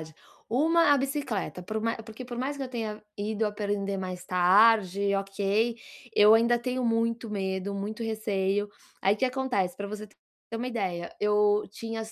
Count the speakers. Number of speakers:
1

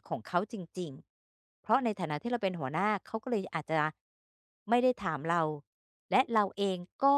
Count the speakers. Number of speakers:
1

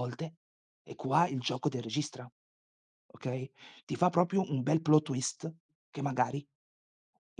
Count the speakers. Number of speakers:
1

